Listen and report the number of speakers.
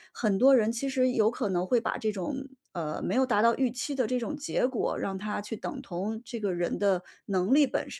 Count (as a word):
one